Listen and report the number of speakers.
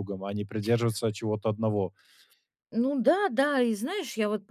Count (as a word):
two